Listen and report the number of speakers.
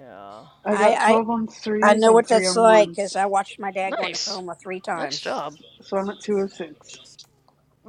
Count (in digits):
3